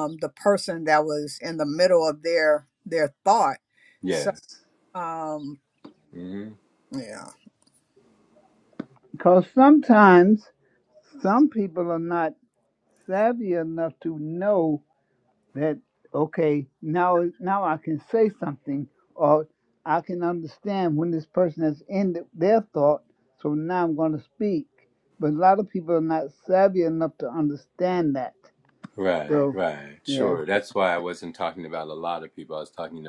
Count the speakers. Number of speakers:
three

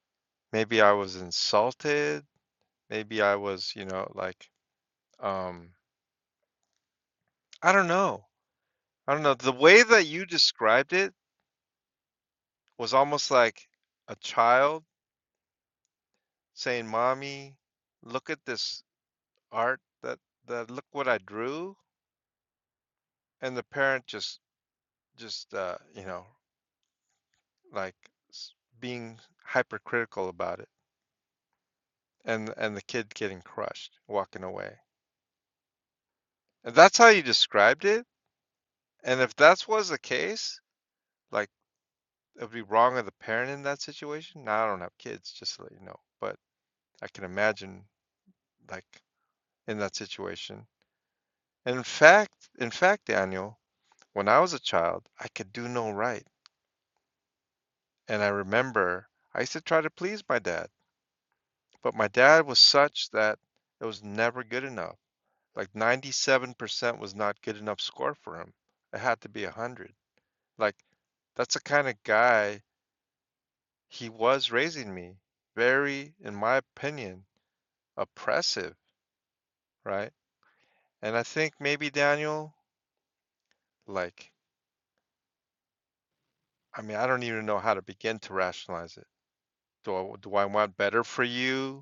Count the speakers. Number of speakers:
one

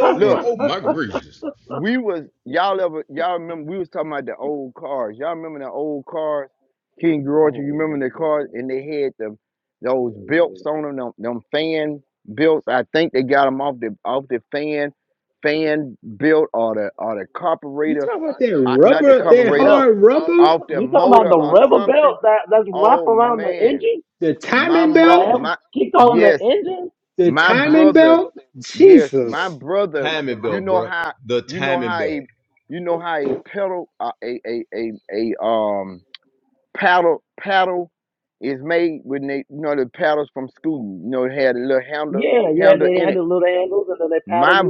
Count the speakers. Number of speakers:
four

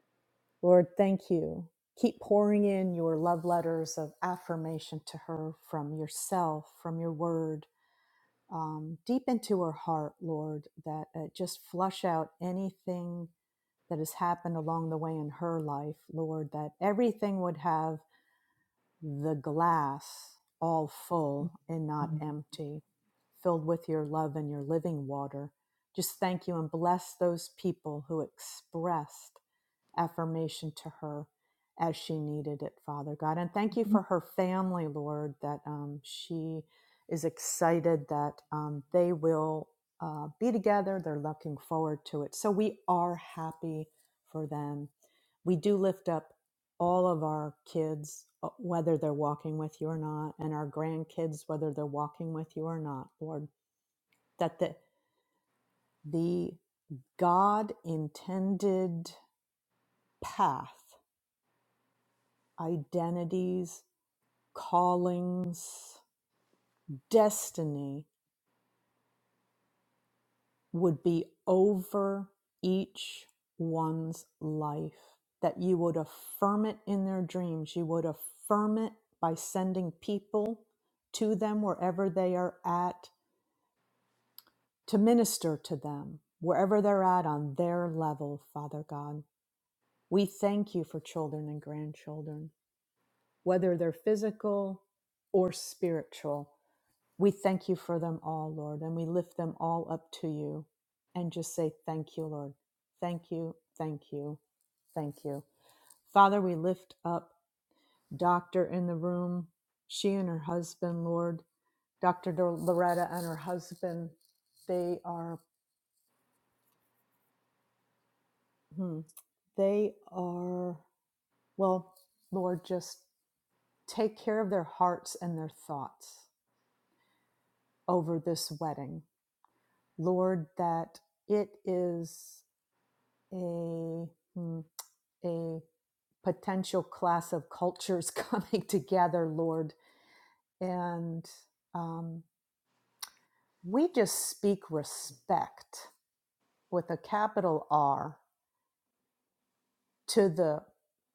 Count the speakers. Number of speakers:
one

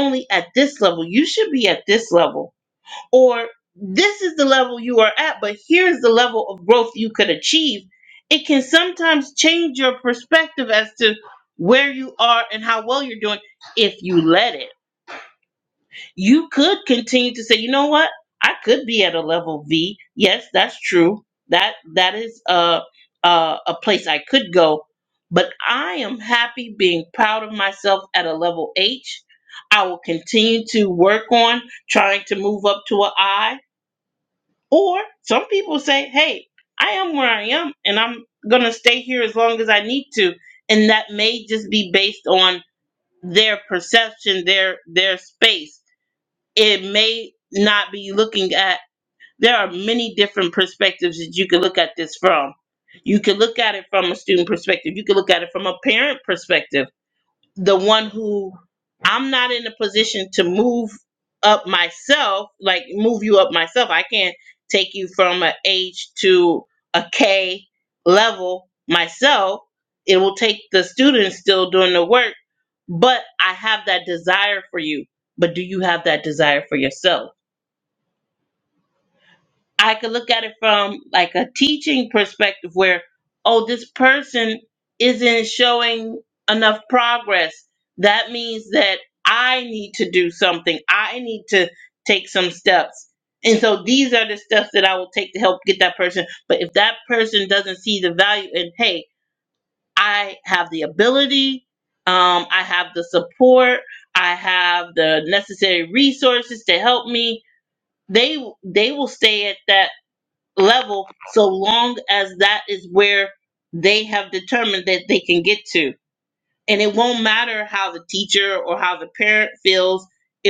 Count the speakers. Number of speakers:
one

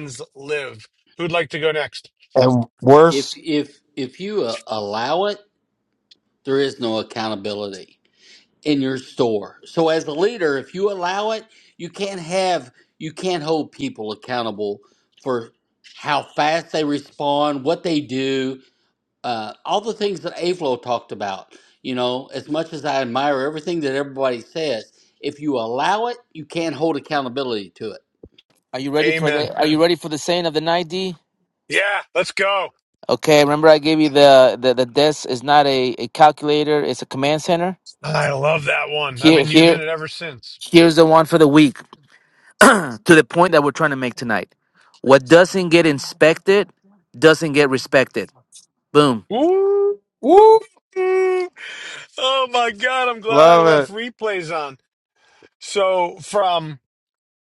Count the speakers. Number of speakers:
four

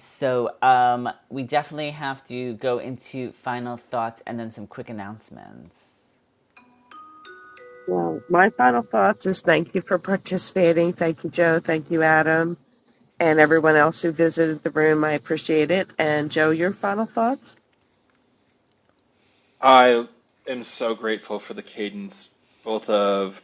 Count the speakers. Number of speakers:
three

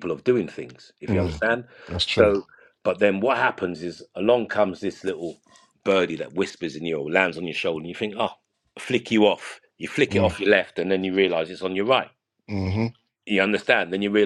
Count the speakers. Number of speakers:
two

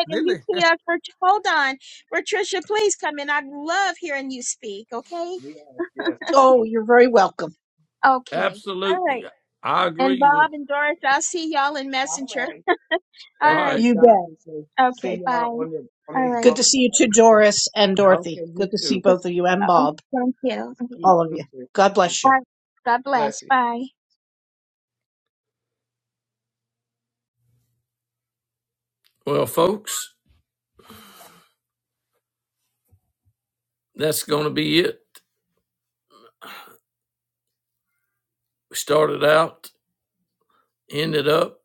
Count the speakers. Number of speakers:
four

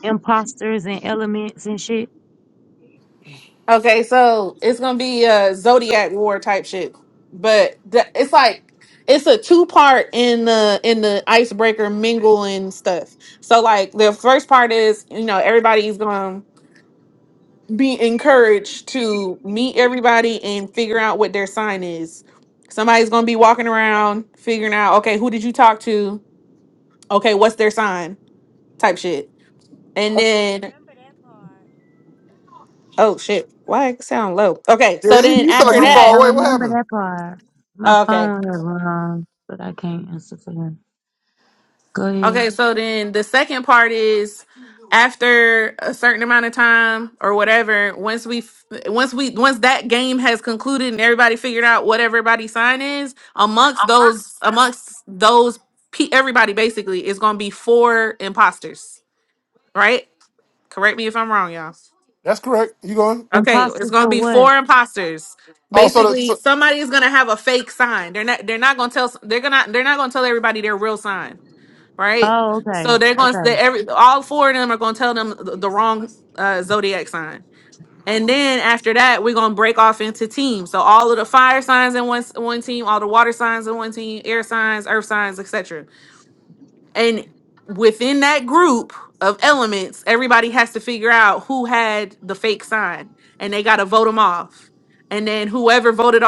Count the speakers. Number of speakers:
three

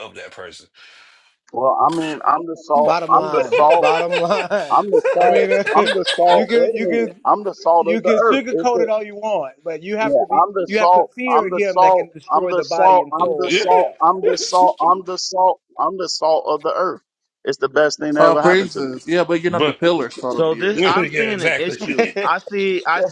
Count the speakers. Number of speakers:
five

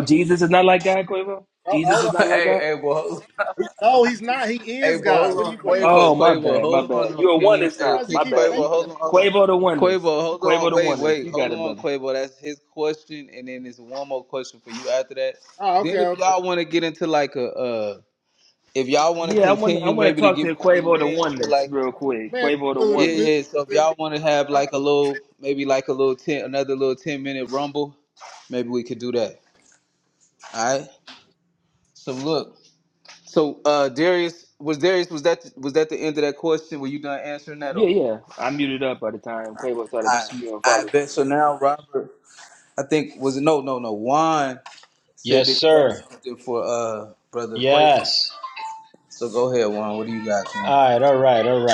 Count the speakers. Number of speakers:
four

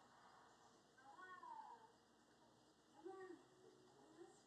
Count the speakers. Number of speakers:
zero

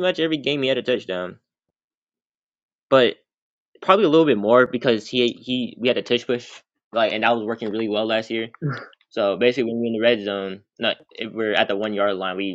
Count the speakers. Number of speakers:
one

